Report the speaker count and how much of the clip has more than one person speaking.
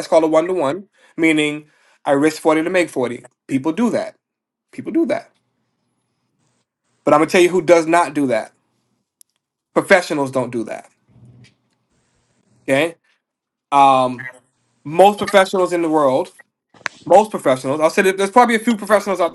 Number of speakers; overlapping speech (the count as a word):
one, no overlap